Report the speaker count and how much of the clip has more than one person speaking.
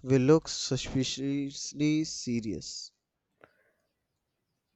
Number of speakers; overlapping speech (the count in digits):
1, no overlap